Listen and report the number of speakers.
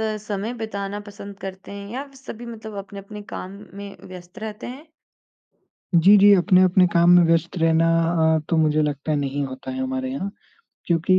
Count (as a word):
two